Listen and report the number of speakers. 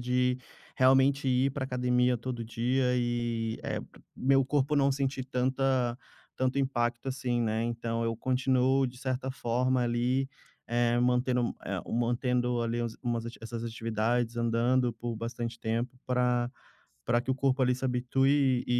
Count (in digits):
1